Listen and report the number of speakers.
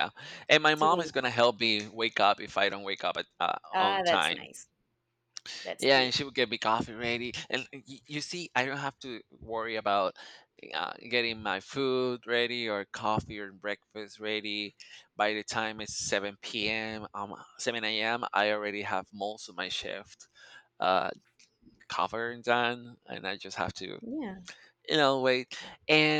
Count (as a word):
two